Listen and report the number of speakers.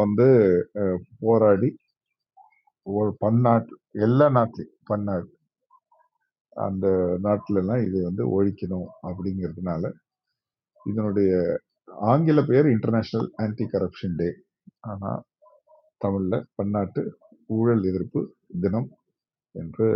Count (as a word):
one